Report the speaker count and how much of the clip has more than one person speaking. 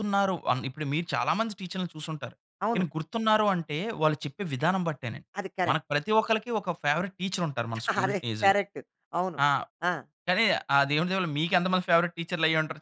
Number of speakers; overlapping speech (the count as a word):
two, about 6%